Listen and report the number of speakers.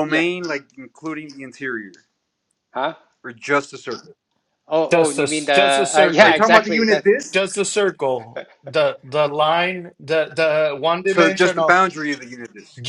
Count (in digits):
3